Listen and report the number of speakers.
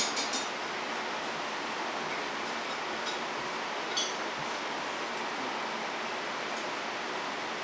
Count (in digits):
0